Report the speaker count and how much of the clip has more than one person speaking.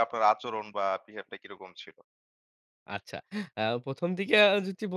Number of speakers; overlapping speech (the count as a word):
two, no overlap